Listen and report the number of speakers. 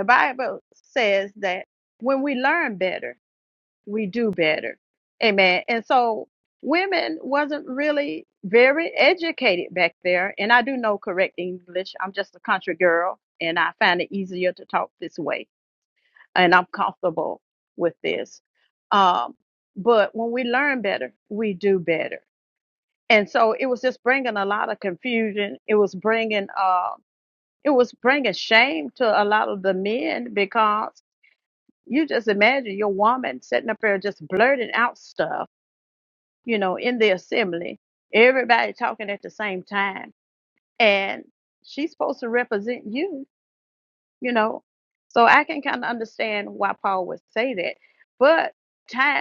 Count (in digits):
1